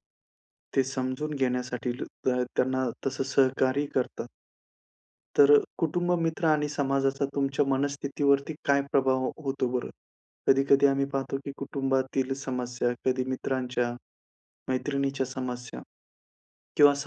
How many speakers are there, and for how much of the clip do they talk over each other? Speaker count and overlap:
one, no overlap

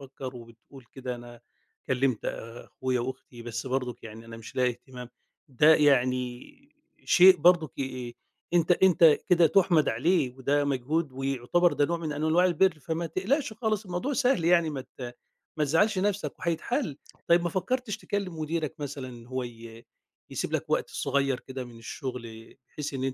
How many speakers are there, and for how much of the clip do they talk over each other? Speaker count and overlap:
one, no overlap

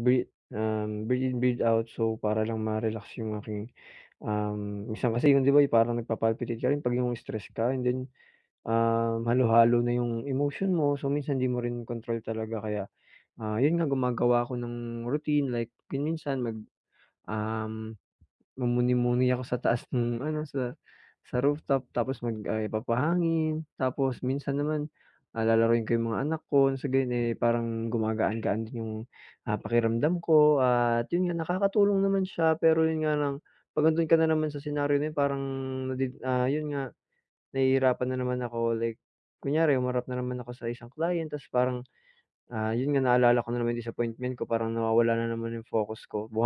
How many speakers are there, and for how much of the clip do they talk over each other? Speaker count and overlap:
one, no overlap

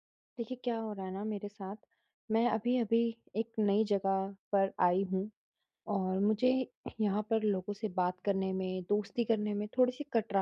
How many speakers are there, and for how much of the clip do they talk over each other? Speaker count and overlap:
one, no overlap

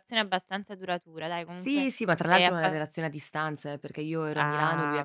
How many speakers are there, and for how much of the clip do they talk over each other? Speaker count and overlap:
two, about 28%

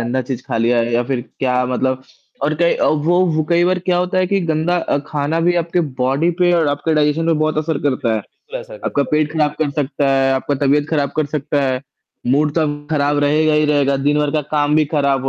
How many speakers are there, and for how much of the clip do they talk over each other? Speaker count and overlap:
two, about 8%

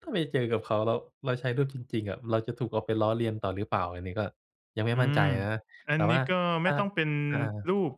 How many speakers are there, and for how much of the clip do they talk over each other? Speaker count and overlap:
two, about 11%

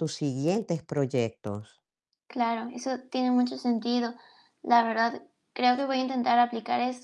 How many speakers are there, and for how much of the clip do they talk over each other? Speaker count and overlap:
two, no overlap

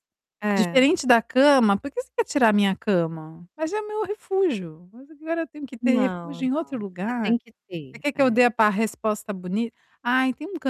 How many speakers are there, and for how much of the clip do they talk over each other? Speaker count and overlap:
two, about 17%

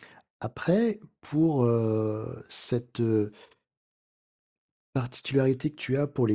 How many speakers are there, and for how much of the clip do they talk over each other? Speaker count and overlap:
one, no overlap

